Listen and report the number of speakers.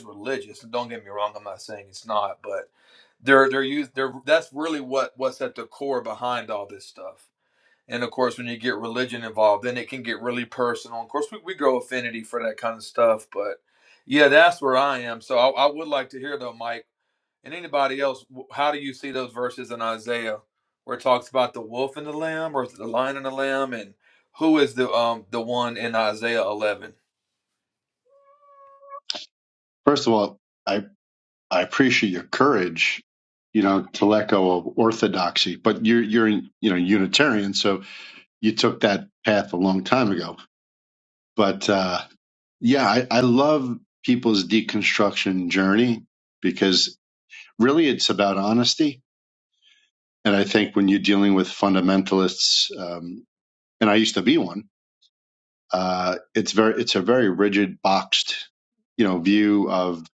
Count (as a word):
two